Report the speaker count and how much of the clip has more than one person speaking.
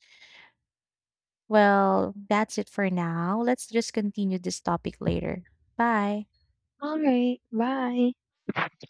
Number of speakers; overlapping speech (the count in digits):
2, no overlap